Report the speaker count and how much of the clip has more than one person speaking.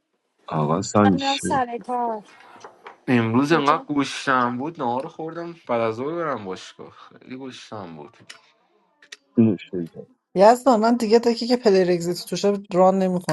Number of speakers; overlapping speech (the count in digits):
4, about 7%